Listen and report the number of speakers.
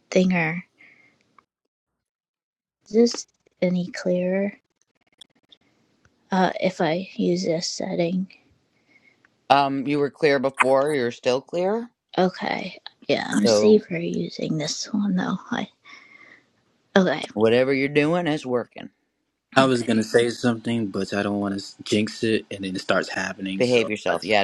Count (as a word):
three